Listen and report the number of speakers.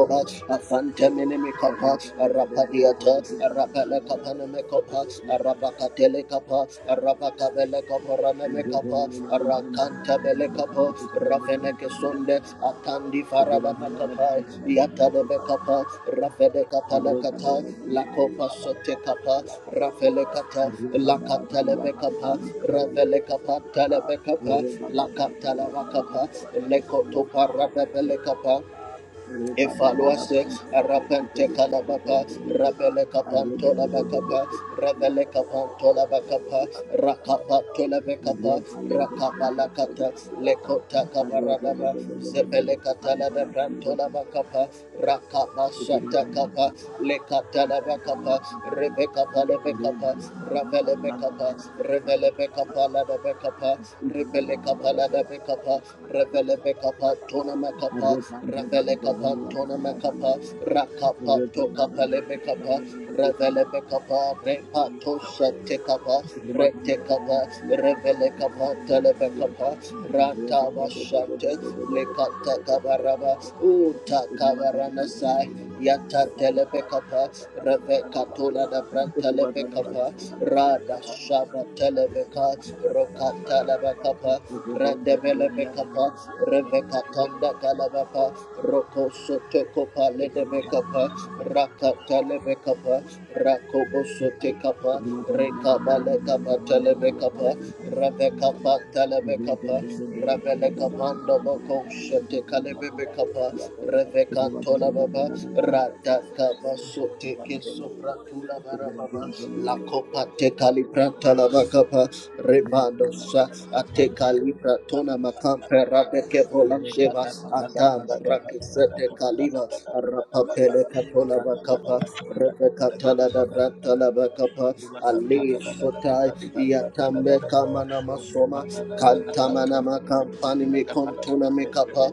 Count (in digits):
2